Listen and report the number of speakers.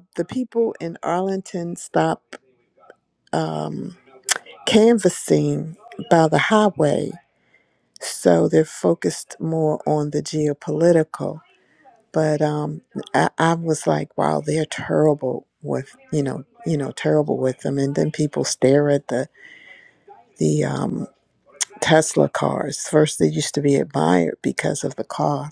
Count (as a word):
one